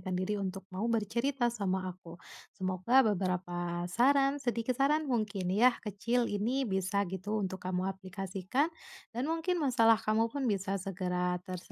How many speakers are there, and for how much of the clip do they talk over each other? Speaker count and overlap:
1, no overlap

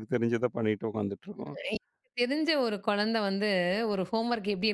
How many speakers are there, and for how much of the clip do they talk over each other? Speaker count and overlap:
2, under 1%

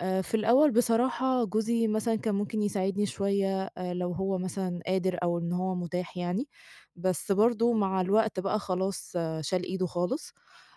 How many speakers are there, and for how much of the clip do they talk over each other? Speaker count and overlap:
1, no overlap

